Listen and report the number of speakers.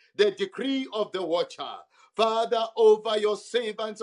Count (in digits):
1